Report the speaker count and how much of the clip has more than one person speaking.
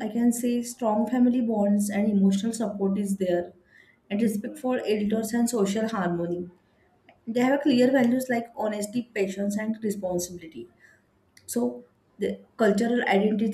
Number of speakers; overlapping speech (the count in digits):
1, no overlap